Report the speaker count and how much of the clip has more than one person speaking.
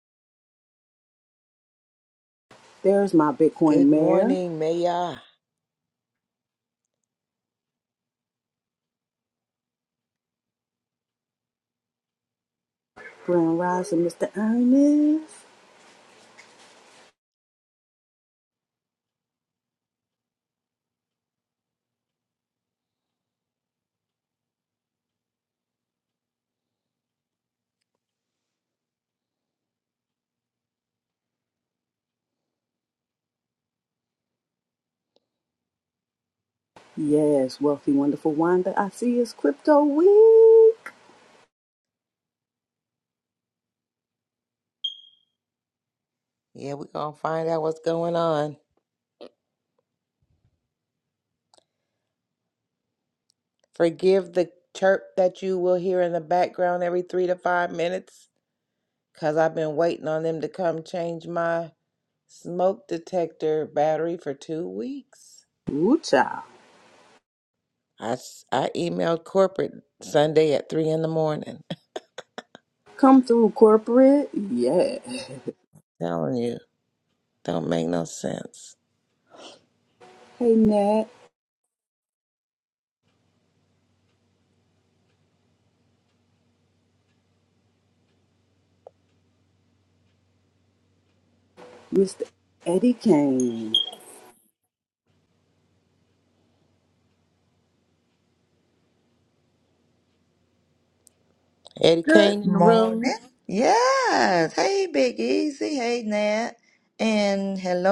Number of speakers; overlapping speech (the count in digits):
3, about 2%